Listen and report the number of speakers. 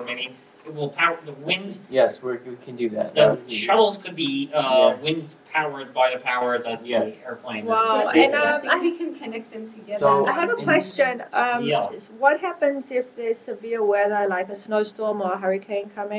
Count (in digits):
4